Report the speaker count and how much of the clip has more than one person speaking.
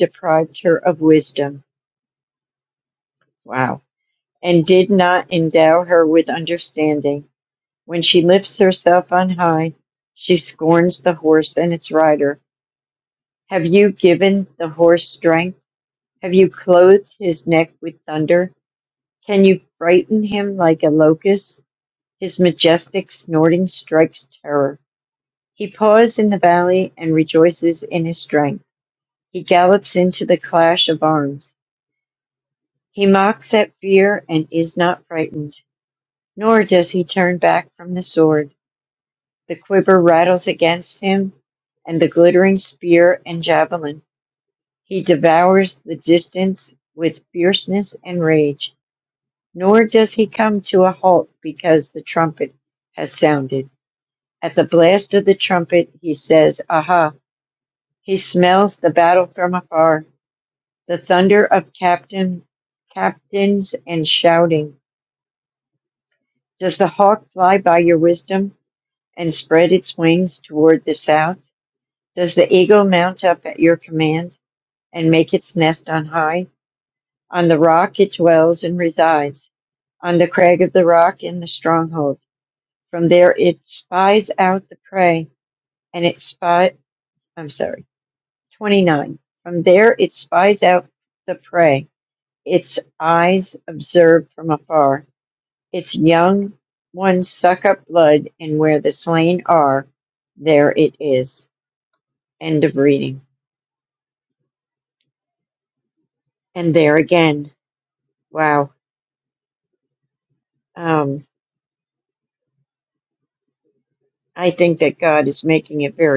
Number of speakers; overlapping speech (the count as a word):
one, no overlap